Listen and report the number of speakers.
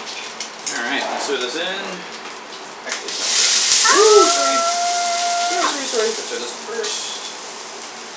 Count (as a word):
two